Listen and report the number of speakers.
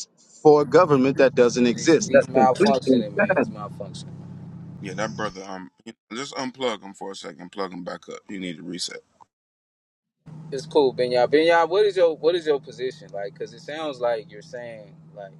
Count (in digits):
3